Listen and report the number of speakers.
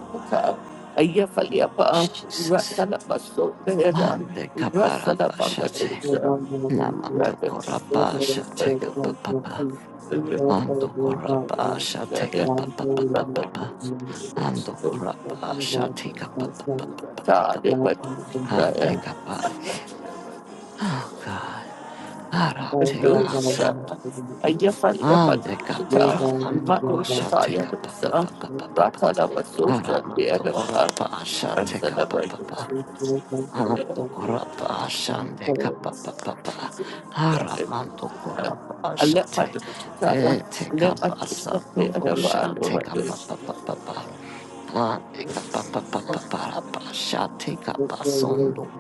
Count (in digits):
3